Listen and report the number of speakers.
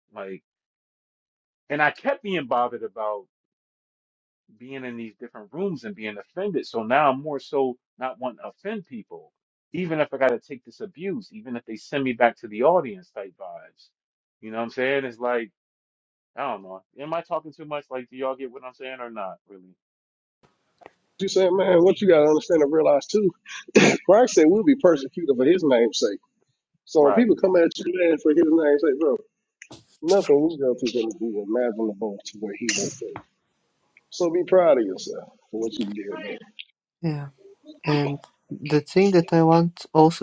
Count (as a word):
three